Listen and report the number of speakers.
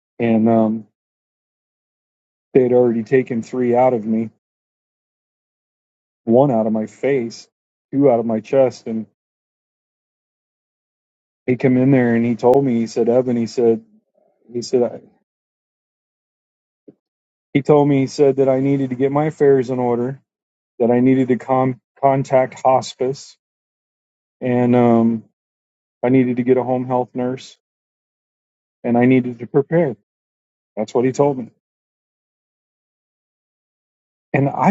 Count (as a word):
one